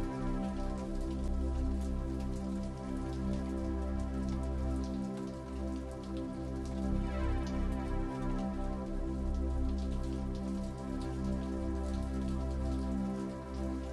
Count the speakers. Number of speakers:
0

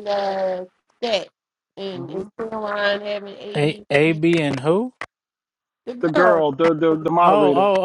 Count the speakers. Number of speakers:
3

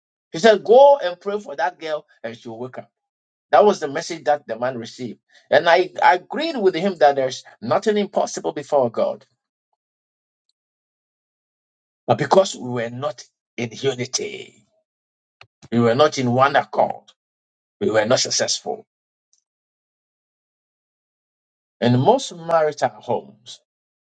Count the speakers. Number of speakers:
1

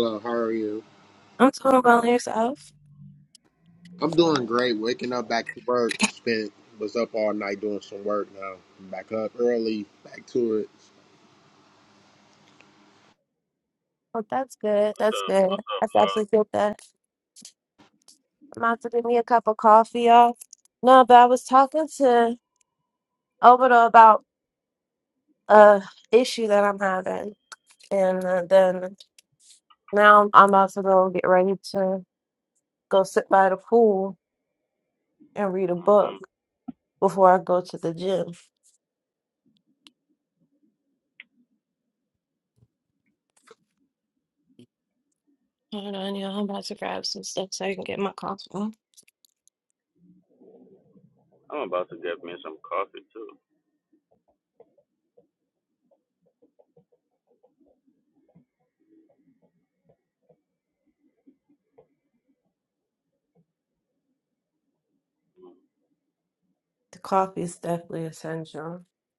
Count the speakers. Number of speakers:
3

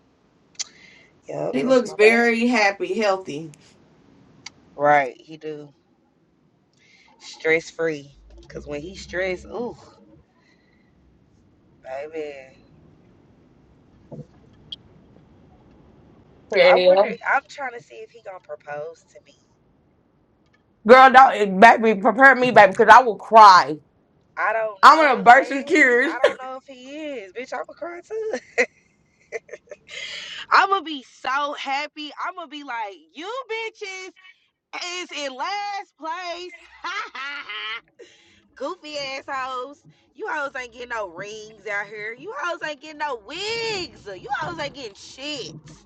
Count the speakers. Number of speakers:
2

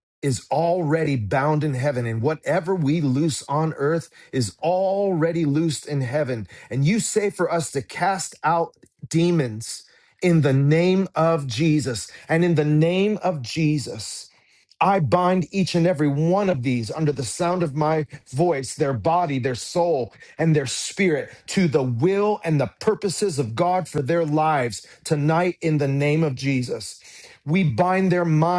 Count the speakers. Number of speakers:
1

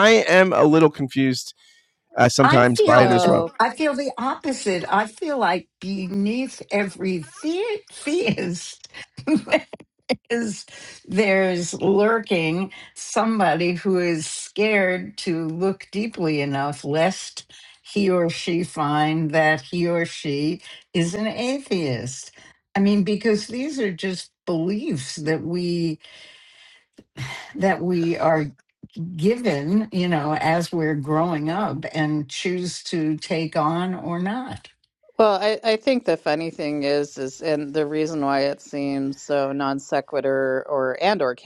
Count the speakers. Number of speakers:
3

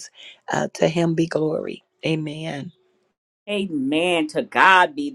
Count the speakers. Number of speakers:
2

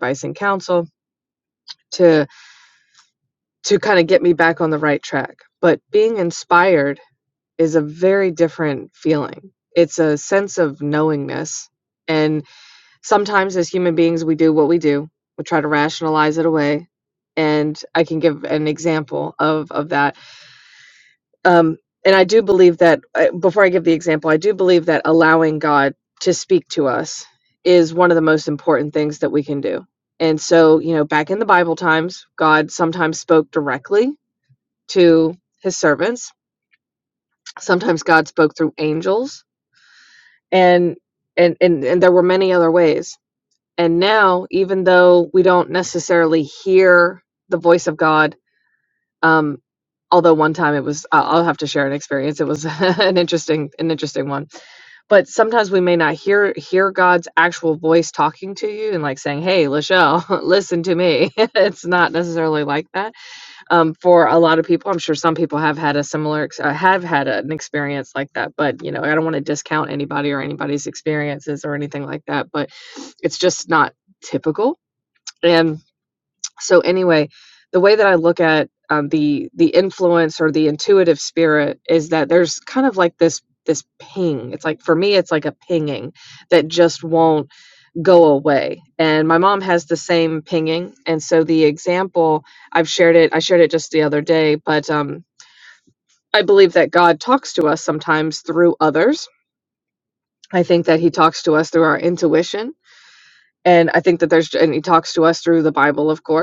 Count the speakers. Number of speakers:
1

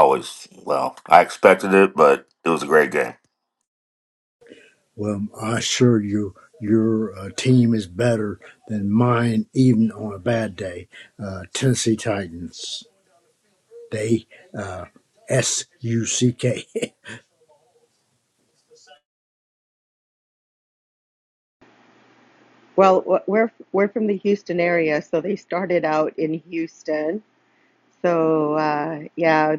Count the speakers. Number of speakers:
3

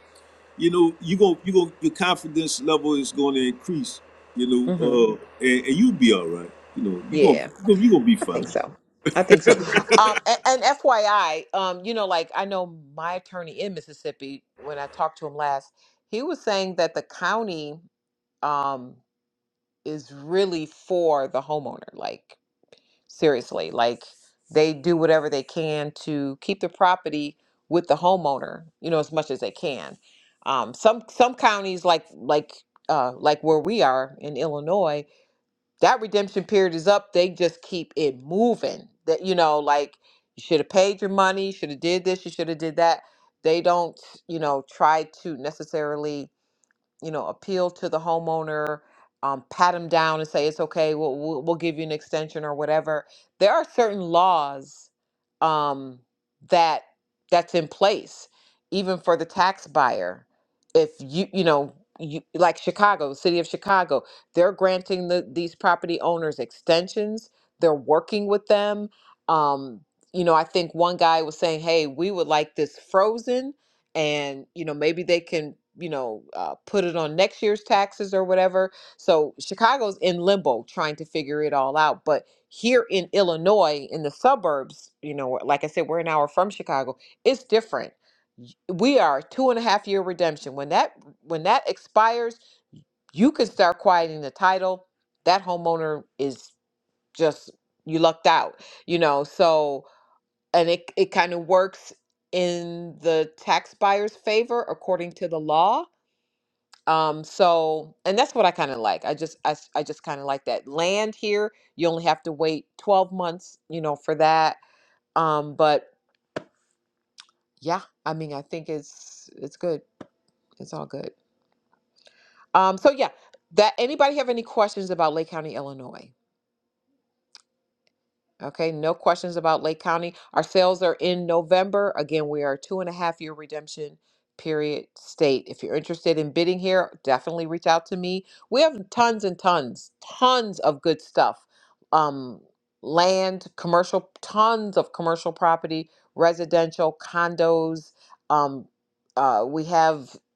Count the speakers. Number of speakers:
2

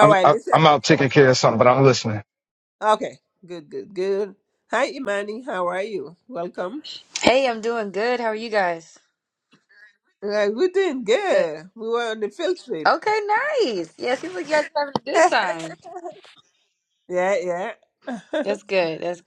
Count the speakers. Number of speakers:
3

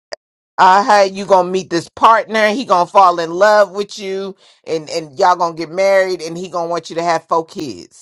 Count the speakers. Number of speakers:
1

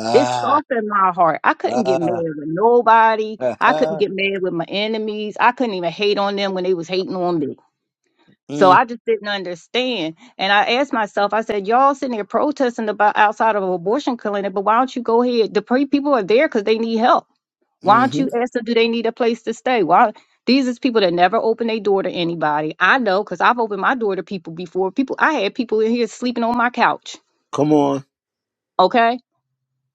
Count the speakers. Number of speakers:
2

